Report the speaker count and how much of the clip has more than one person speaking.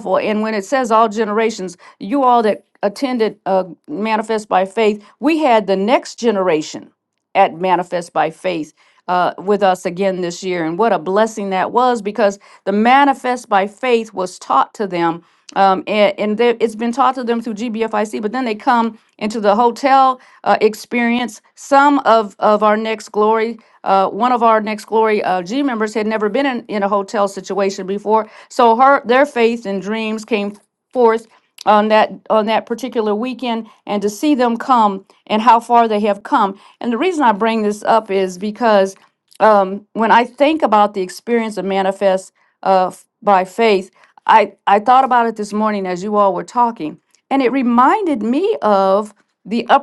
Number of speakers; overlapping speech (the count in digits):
1, no overlap